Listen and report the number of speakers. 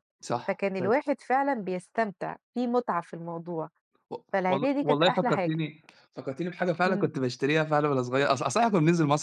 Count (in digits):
2